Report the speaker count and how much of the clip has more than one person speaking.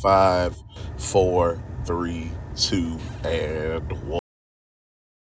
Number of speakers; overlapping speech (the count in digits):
1, no overlap